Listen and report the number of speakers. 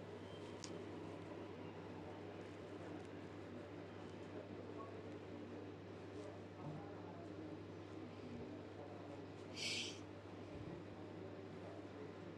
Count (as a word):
zero